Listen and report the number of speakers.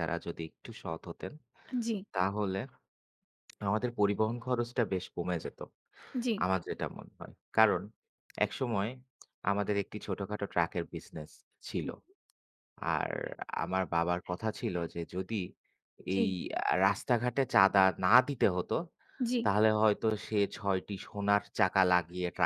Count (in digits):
2